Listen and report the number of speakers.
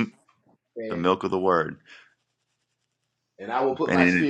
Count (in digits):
2